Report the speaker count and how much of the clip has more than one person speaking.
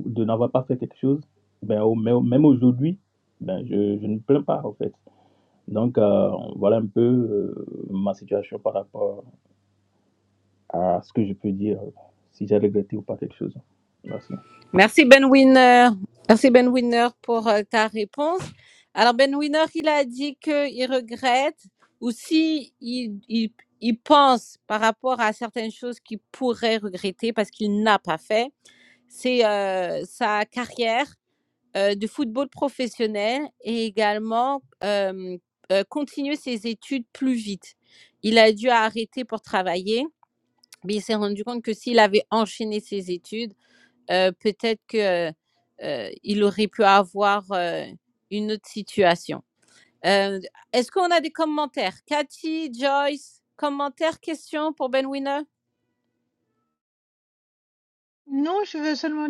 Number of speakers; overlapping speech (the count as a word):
three, no overlap